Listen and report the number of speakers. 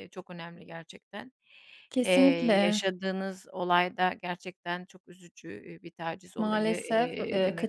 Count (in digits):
2